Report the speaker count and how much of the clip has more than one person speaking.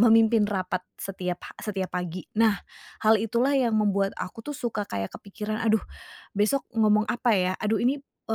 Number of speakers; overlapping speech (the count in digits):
1, no overlap